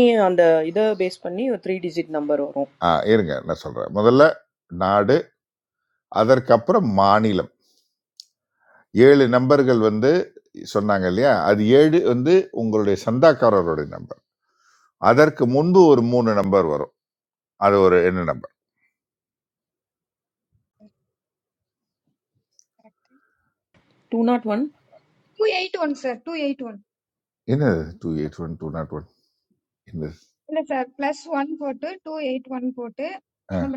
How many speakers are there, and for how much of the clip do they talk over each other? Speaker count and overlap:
three, no overlap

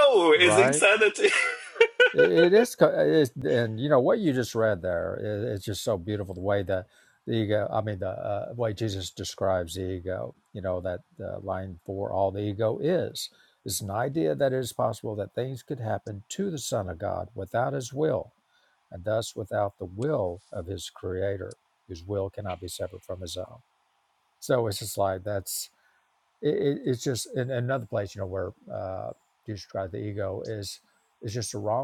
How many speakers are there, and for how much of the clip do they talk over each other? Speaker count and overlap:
two, about 1%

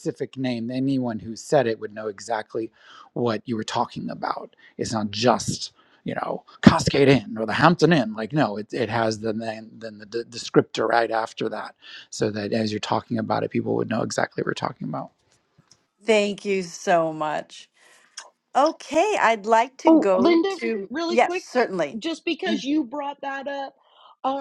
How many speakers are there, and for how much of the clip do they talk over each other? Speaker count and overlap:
three, about 6%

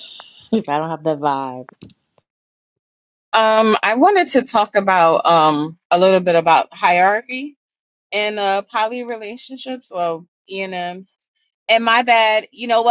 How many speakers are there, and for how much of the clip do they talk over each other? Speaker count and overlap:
two, no overlap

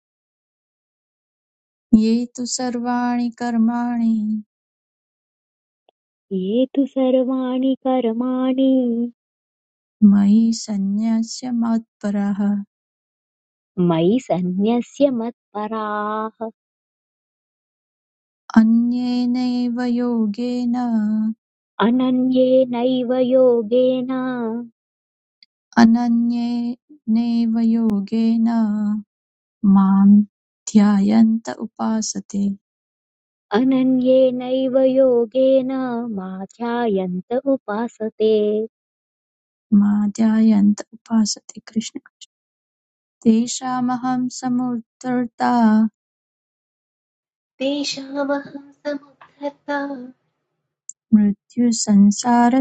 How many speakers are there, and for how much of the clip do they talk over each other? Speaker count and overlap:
three, no overlap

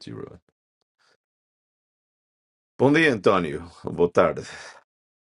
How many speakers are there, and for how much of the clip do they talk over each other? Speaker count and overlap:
one, no overlap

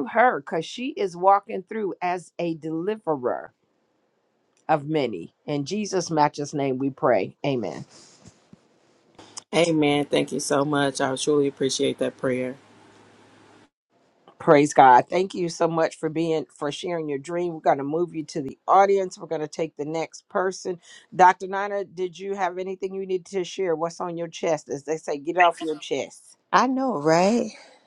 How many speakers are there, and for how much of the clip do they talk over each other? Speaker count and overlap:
three, no overlap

